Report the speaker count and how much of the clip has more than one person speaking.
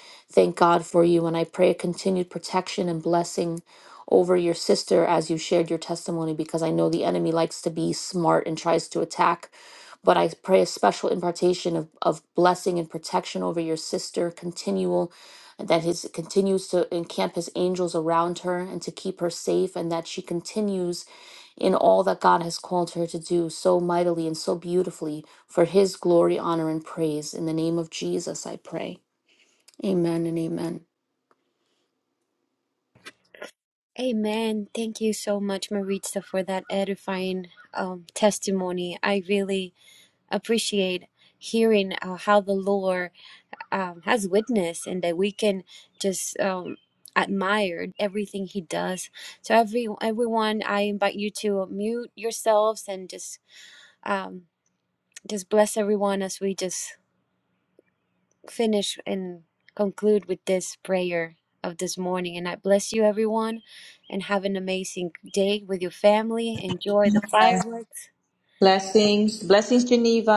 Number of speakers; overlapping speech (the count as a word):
three, no overlap